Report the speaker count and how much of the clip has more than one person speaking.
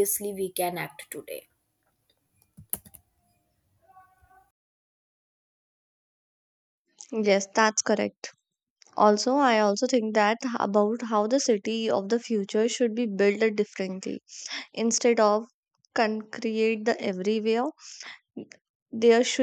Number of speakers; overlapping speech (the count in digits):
2, no overlap